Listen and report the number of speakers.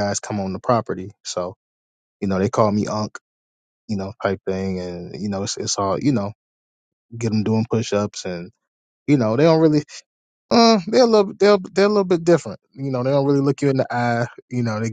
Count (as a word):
one